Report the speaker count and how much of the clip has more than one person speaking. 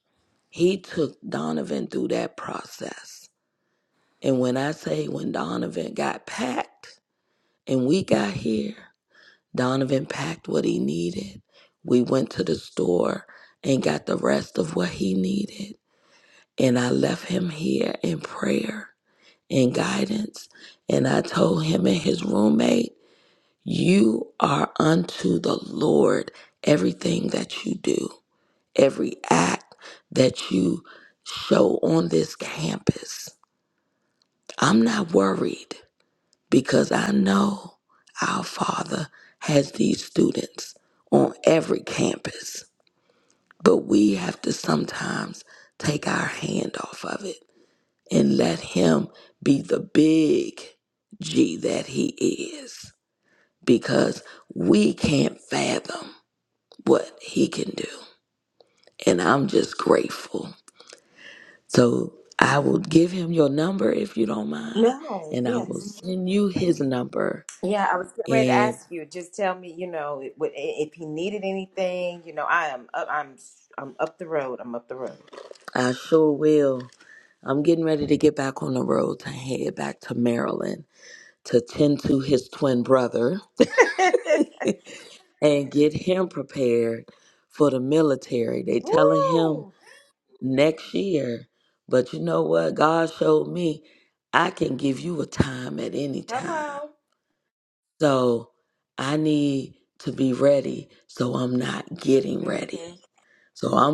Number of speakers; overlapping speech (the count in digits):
2, about 3%